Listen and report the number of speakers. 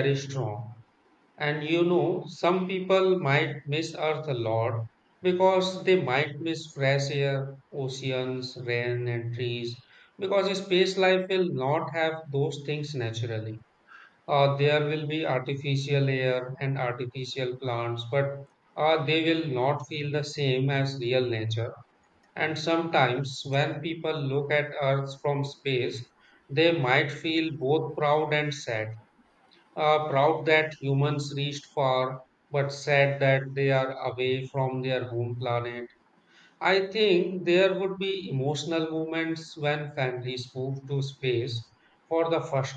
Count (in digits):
1